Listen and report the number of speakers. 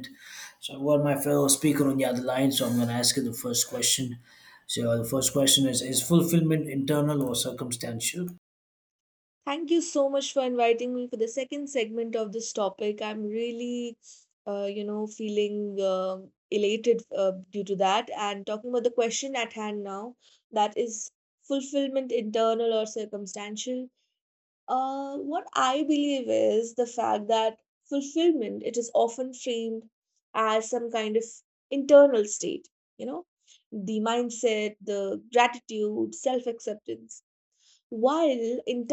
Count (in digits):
2